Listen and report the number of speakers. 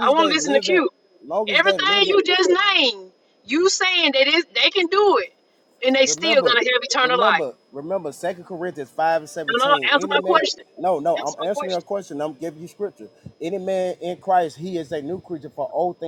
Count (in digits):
2